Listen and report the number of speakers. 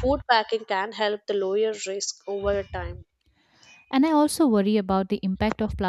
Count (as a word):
two